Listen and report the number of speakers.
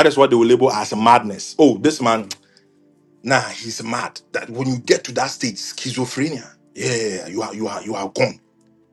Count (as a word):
one